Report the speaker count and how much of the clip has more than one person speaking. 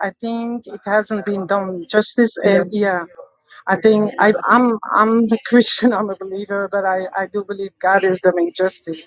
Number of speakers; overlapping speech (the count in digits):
1, no overlap